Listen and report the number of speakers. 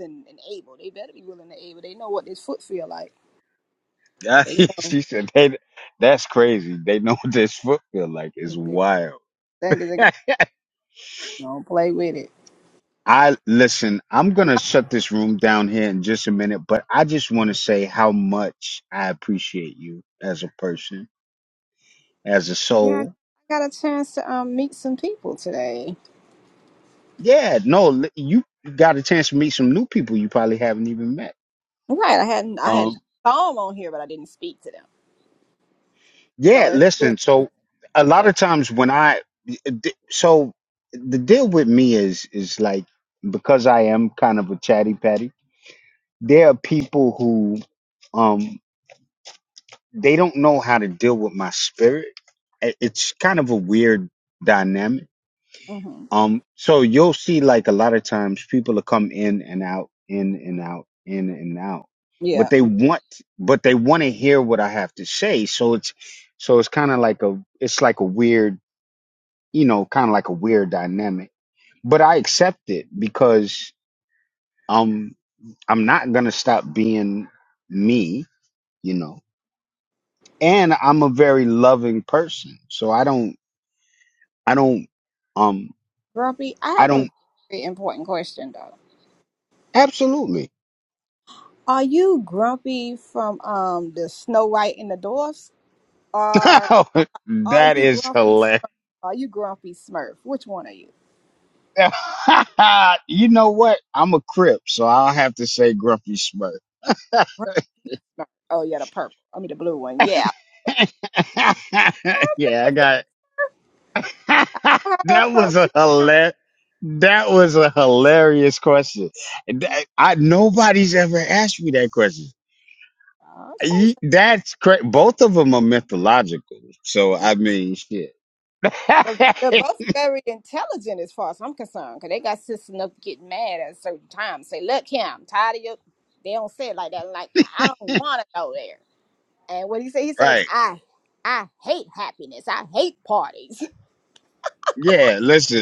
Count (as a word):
two